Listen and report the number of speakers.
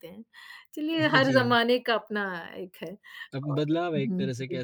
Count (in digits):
2